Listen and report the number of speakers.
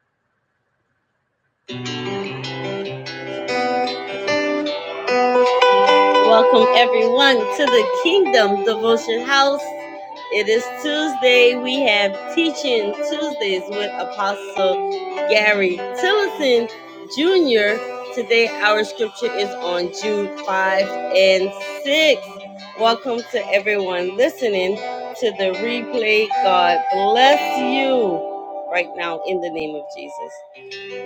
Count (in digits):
1